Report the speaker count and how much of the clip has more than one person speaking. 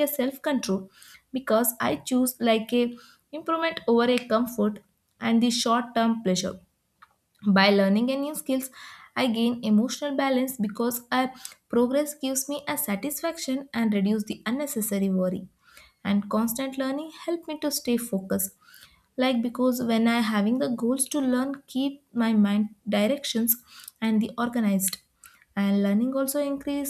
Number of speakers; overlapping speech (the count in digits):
1, no overlap